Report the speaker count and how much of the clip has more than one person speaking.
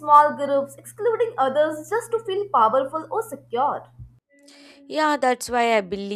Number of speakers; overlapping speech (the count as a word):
two, no overlap